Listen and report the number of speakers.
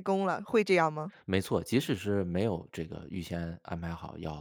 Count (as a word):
two